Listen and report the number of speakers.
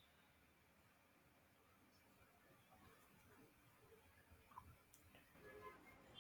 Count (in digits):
0